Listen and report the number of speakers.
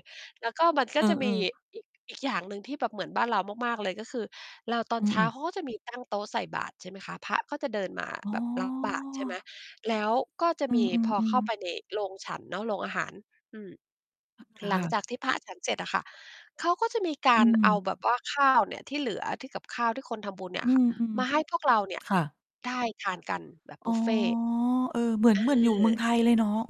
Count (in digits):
2